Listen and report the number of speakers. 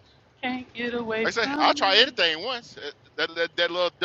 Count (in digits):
2